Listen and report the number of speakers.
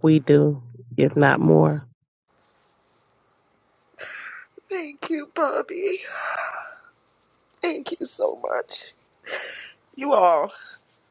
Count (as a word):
two